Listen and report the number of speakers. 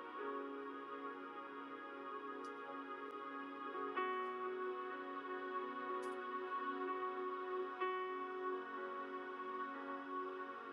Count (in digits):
0